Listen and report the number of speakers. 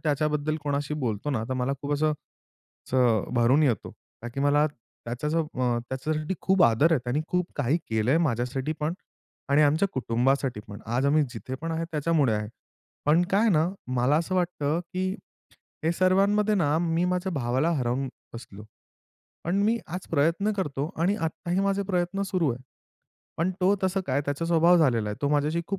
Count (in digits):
1